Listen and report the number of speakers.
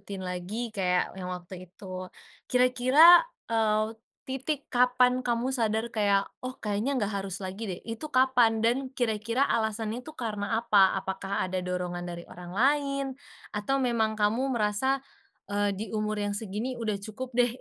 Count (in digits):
1